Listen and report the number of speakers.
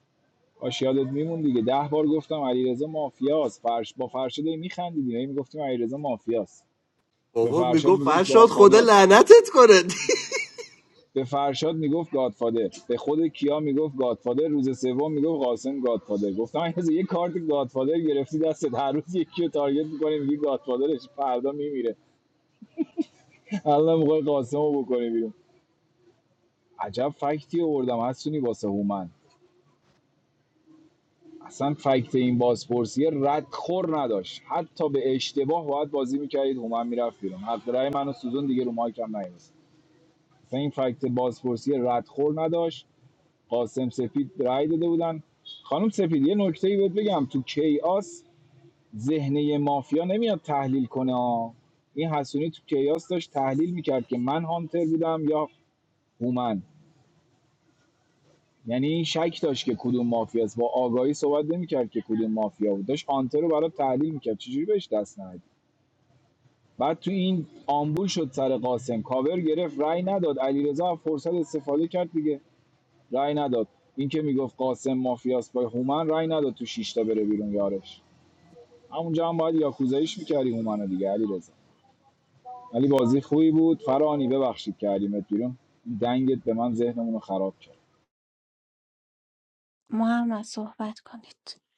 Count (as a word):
three